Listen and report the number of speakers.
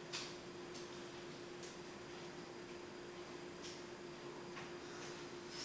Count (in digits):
0